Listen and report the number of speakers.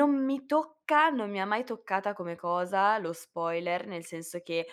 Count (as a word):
one